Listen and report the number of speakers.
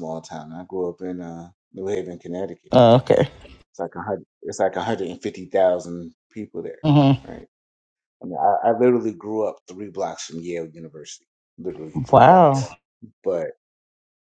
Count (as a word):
two